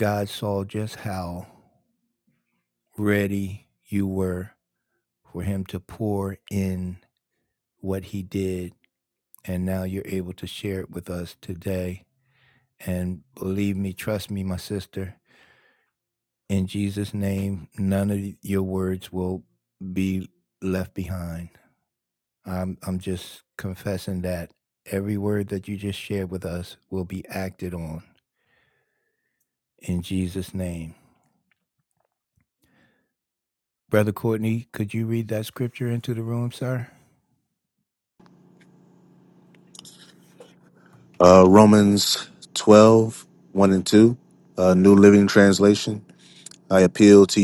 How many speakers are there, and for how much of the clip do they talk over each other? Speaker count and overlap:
two, no overlap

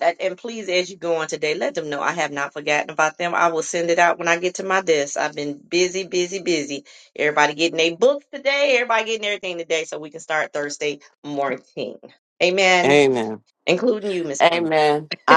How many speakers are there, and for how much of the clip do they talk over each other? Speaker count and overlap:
two, about 3%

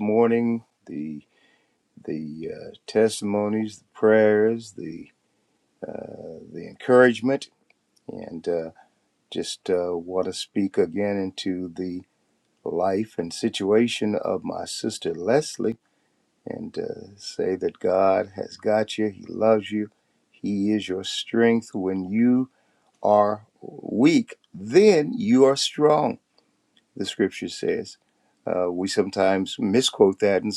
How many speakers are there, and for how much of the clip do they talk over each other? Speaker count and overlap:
one, no overlap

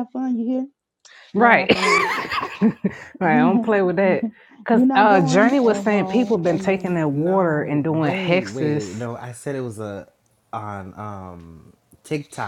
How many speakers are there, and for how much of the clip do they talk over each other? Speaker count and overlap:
three, about 35%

